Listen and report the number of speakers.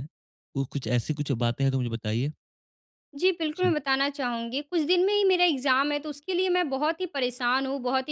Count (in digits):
2